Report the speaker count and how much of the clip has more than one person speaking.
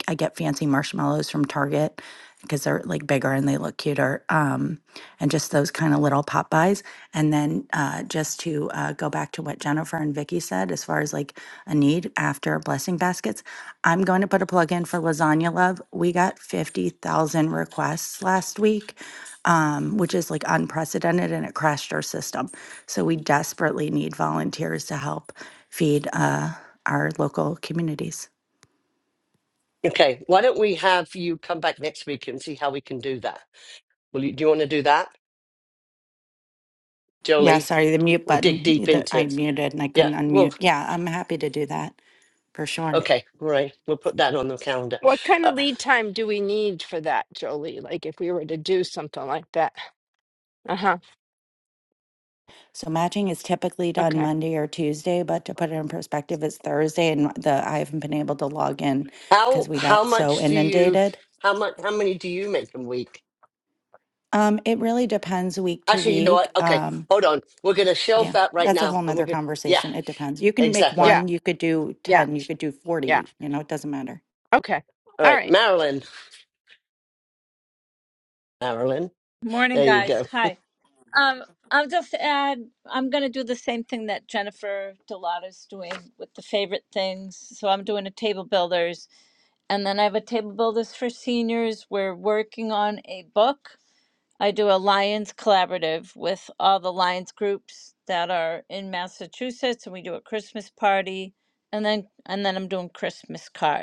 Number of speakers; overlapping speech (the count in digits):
4, about 8%